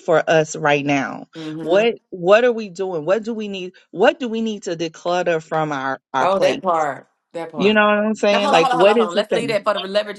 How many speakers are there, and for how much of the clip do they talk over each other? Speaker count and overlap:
two, about 20%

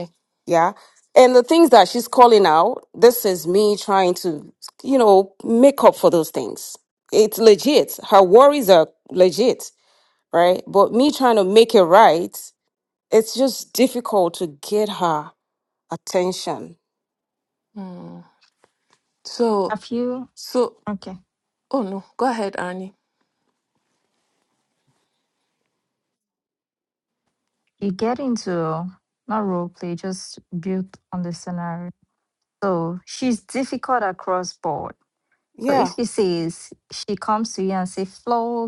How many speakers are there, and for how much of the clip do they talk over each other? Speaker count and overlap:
three, about 1%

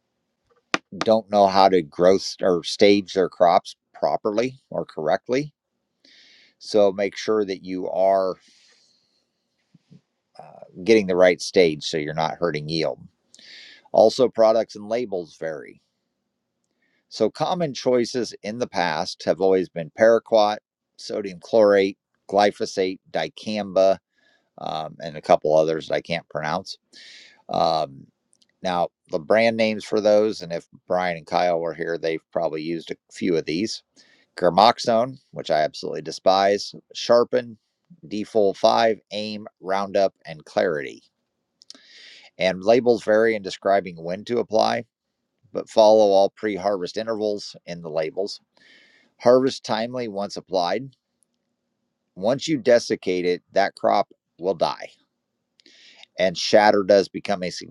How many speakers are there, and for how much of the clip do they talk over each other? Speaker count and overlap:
one, no overlap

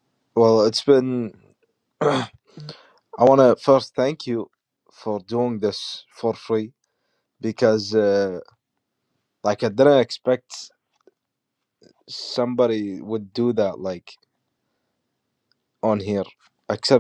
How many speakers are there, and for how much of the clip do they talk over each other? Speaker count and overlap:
one, no overlap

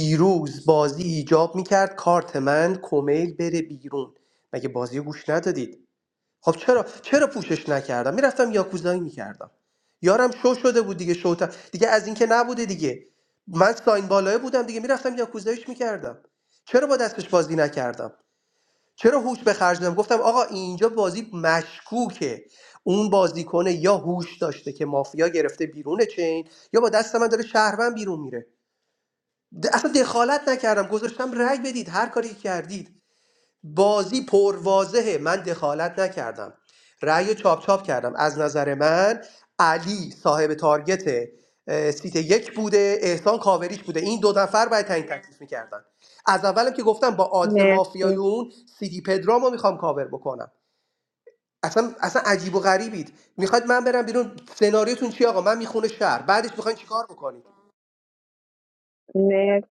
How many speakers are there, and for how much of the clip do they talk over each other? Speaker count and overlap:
two, about 1%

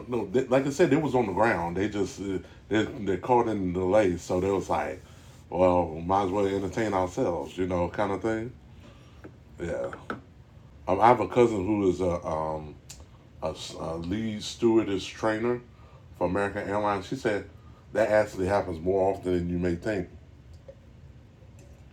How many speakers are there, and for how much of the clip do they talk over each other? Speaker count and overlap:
one, no overlap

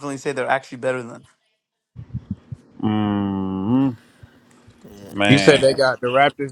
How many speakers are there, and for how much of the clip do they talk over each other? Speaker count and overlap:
three, about 8%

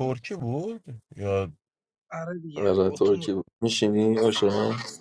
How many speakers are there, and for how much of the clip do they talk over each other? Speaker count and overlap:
three, about 15%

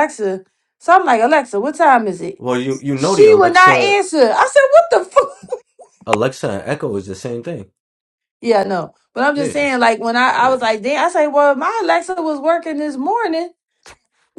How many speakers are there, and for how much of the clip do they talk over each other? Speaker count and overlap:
two, about 9%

